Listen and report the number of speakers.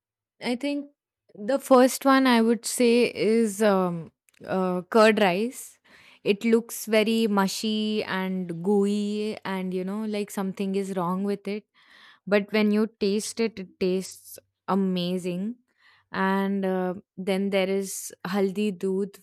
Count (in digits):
1